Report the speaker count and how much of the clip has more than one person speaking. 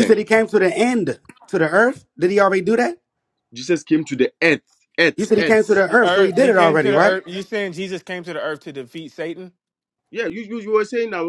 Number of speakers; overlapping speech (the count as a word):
three, about 16%